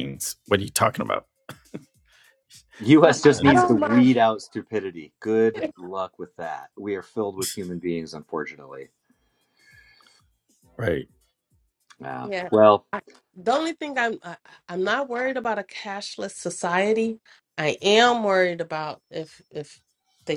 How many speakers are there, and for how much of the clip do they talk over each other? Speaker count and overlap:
3, about 6%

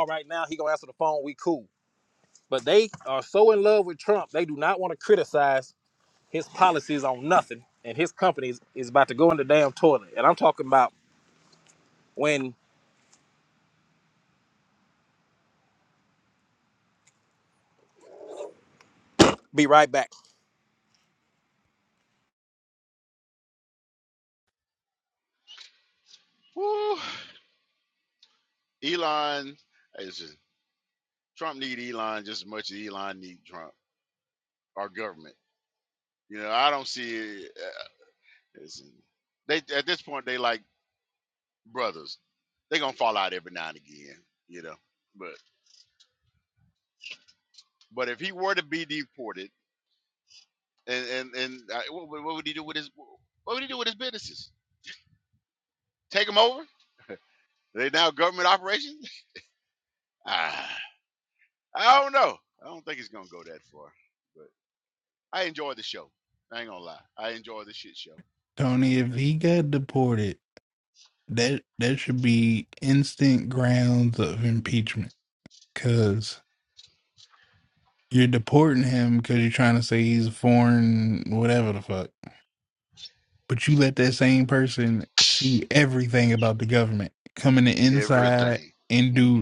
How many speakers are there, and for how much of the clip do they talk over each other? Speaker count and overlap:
3, about 1%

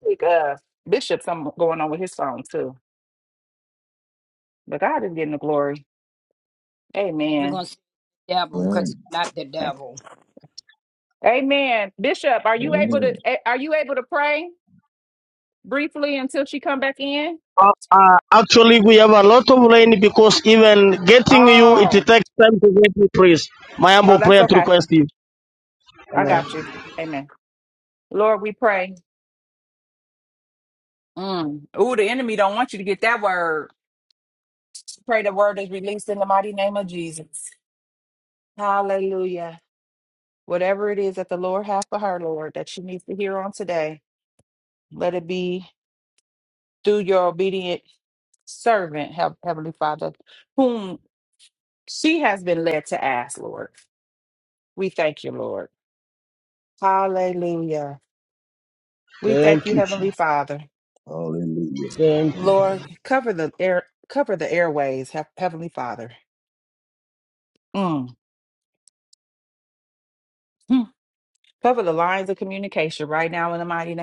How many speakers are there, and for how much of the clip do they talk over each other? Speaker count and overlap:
4, about 5%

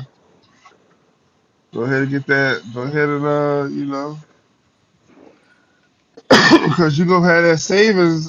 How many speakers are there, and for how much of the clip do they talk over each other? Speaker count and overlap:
1, no overlap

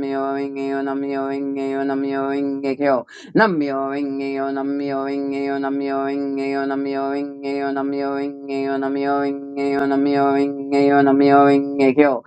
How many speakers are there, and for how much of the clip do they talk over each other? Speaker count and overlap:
1, no overlap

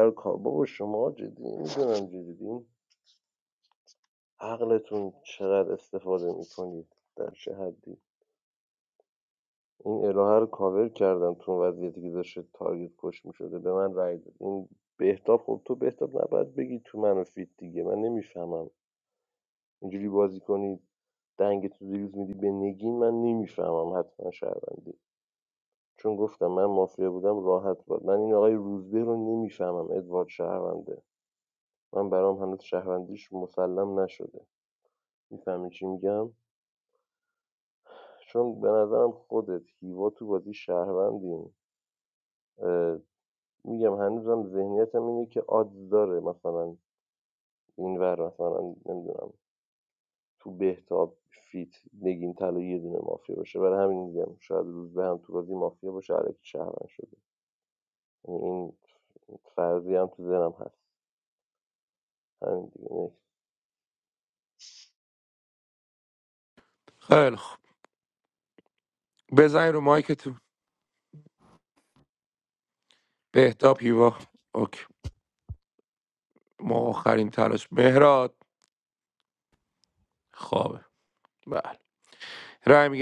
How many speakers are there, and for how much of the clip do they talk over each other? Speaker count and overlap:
2, no overlap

